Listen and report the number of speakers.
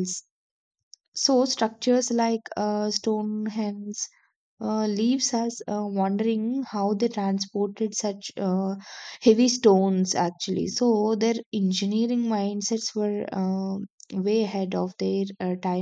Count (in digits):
1